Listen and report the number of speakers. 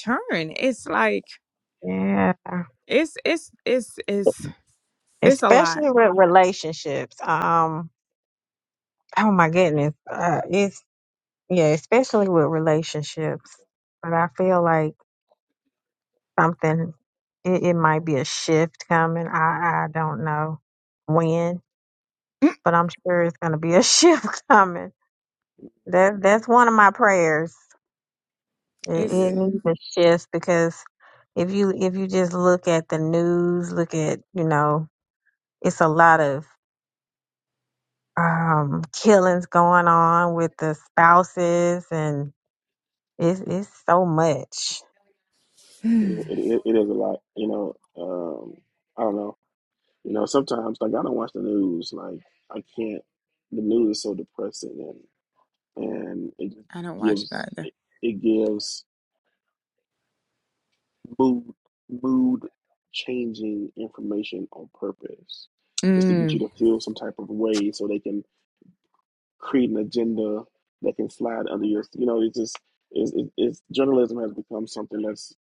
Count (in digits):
3